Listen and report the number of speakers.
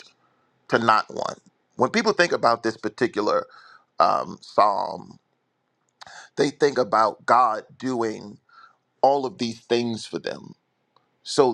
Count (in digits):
1